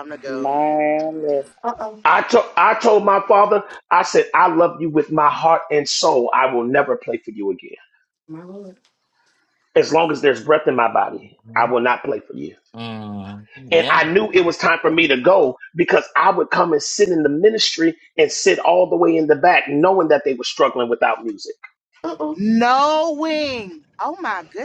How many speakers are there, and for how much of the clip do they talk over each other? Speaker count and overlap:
five, about 3%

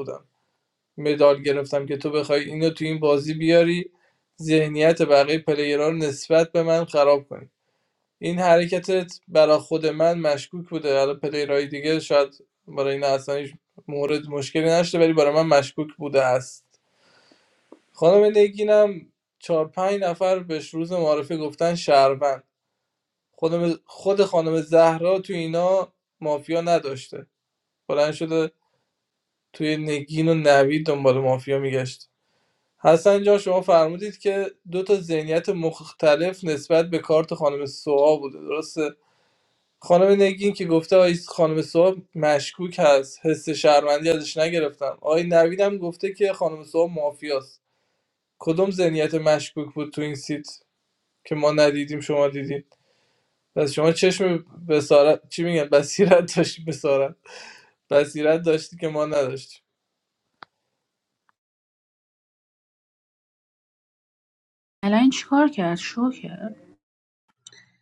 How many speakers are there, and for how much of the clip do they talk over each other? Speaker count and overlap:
two, no overlap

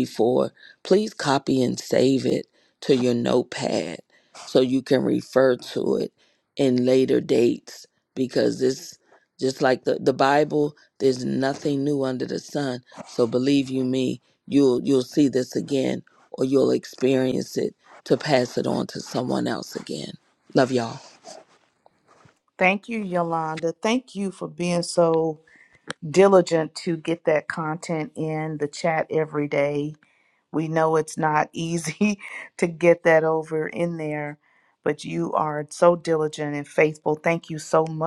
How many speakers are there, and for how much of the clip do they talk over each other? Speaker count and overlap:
two, no overlap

